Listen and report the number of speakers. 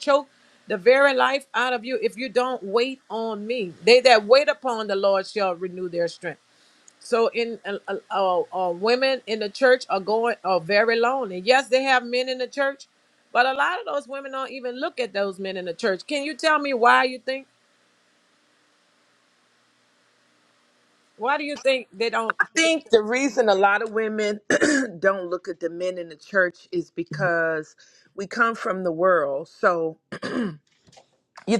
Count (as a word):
two